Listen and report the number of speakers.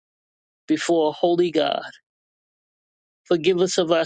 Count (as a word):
one